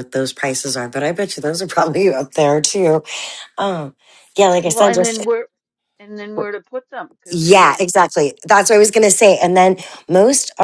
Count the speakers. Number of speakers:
two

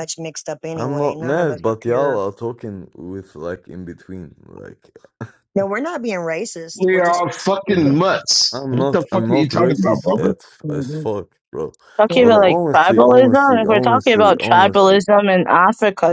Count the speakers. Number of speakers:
four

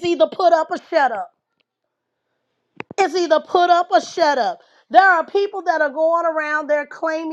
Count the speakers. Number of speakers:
one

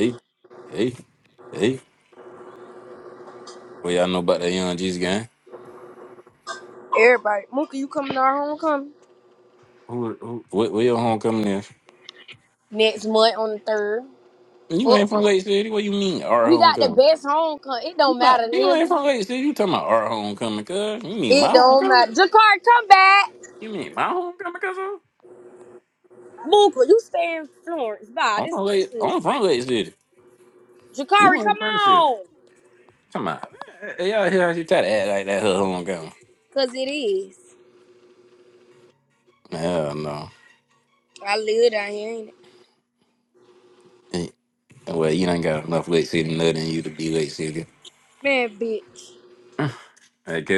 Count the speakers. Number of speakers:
two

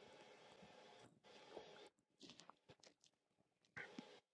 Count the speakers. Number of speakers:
zero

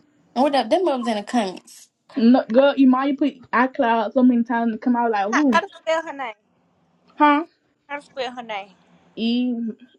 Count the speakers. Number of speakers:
three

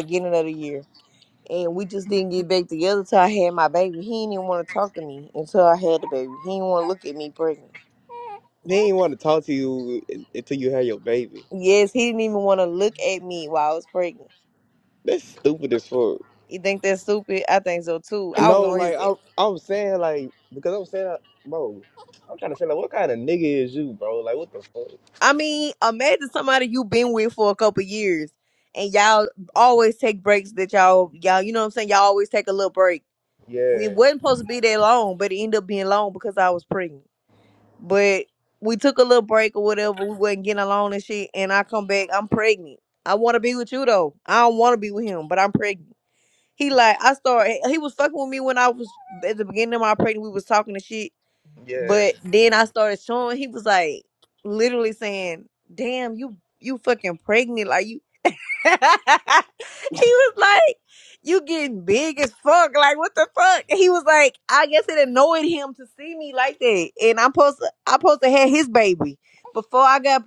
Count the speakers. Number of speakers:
two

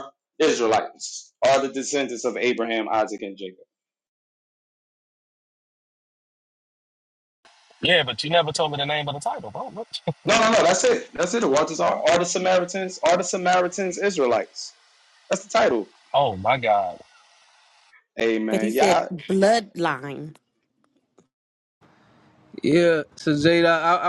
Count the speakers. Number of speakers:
four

